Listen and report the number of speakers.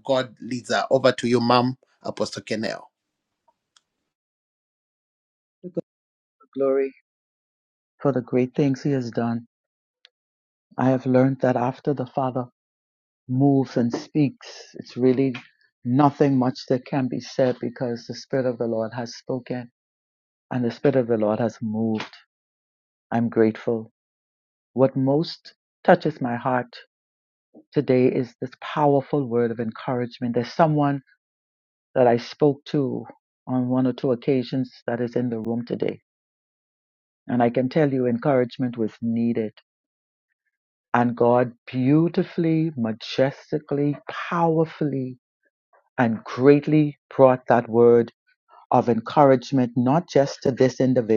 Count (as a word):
two